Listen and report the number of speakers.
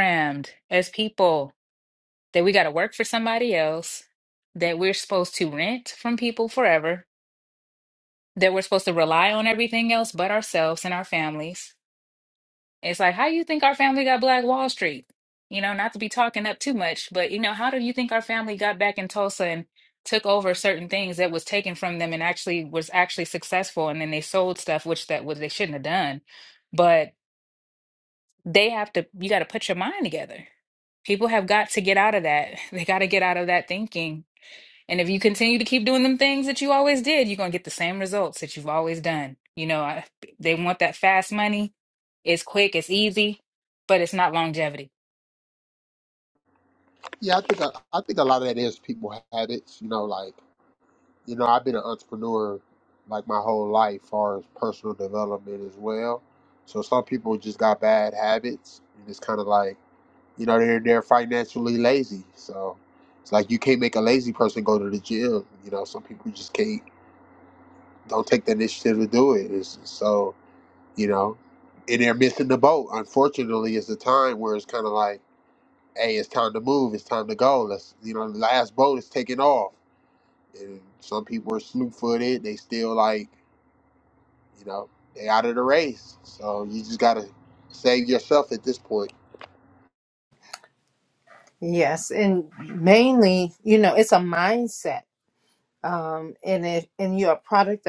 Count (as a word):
three